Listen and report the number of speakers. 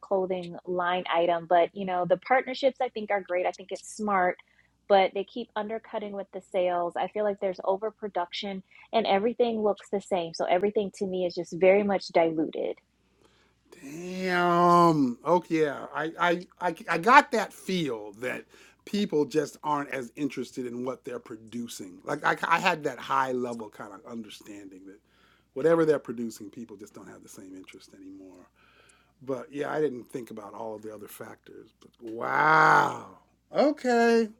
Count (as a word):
two